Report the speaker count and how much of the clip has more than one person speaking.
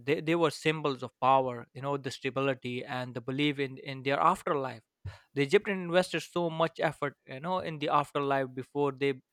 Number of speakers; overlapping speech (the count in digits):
1, no overlap